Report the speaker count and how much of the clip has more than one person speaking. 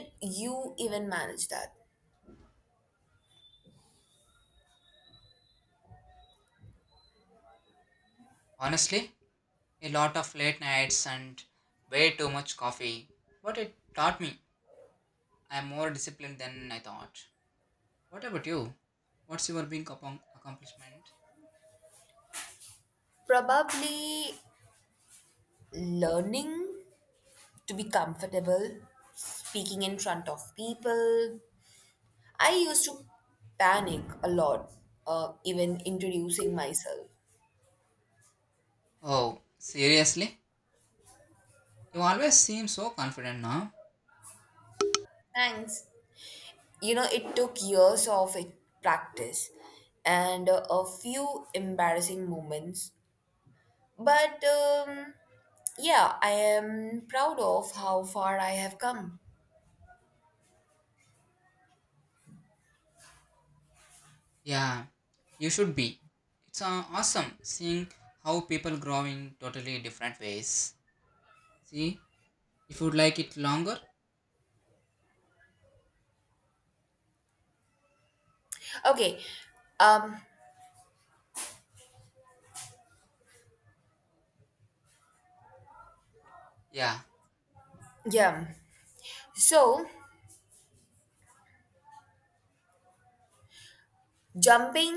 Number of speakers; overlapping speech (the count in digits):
2, no overlap